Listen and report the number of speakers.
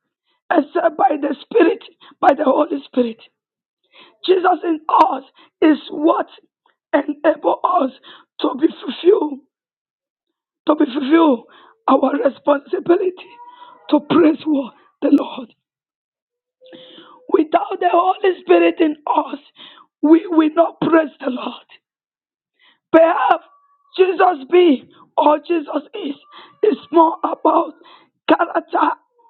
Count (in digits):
1